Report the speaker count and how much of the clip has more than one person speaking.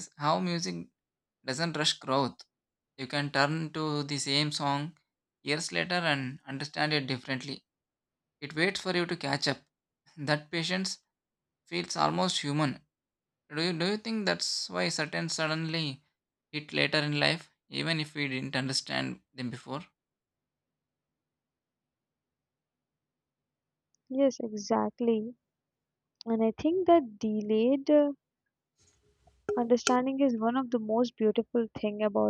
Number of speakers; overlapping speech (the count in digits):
2, no overlap